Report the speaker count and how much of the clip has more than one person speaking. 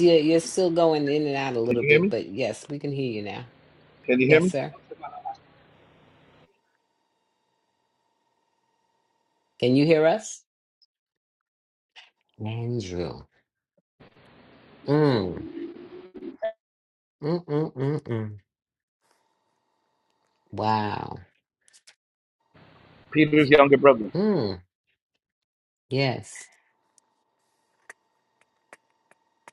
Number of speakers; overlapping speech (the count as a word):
two, about 2%